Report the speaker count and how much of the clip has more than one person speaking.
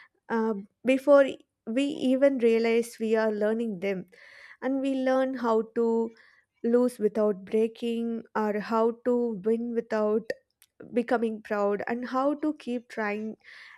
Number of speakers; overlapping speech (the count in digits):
1, no overlap